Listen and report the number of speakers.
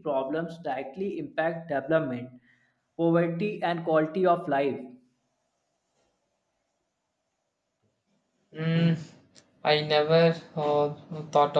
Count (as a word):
two